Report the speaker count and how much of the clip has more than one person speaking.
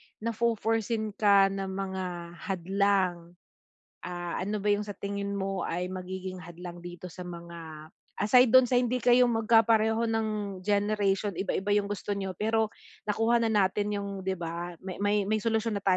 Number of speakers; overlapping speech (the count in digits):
1, no overlap